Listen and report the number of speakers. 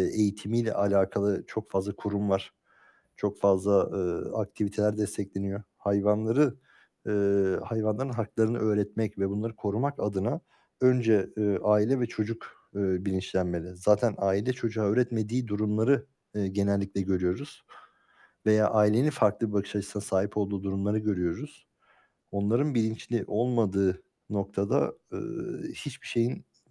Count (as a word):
one